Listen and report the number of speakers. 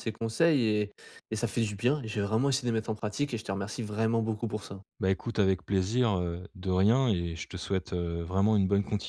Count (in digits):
2